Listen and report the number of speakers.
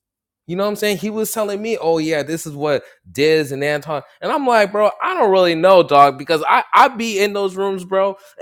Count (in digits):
1